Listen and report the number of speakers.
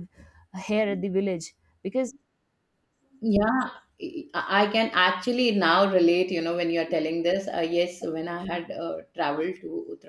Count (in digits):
2